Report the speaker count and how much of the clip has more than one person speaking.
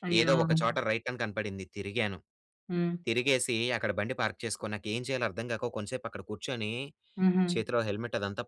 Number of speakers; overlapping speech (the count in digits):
2, about 4%